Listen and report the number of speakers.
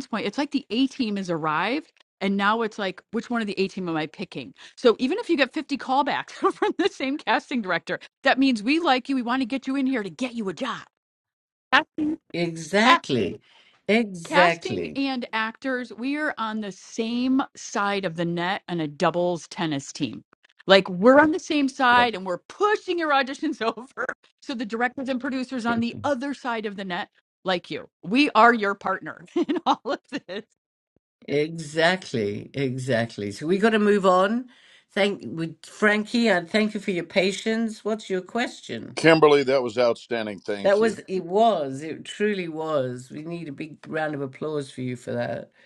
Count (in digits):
3